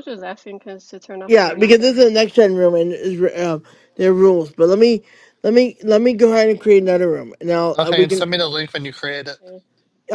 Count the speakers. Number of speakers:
three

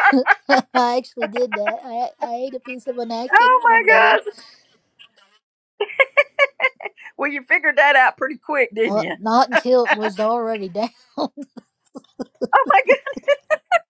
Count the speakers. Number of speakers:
two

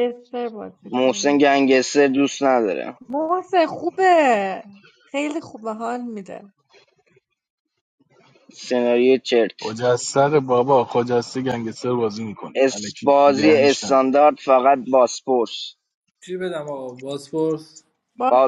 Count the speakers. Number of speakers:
four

